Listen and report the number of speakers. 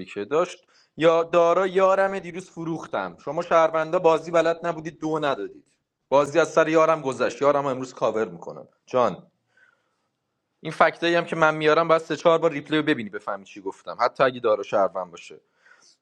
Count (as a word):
one